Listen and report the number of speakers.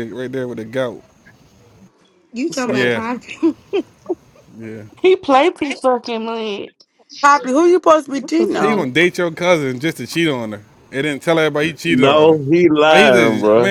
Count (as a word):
five